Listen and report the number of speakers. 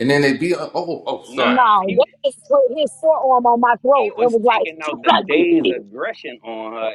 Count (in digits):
3